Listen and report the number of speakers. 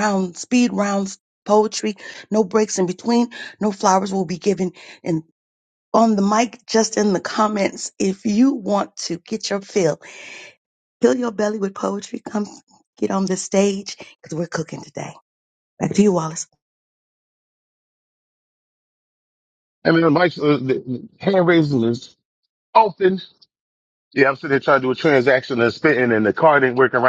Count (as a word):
two